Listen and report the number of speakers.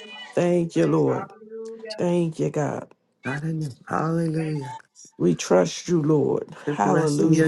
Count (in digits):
3